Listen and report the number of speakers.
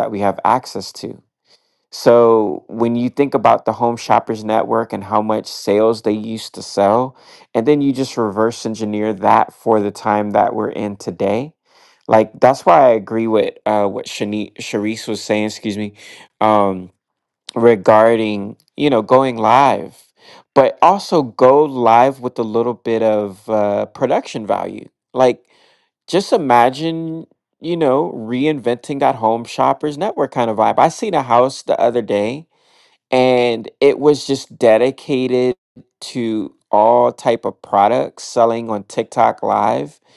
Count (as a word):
one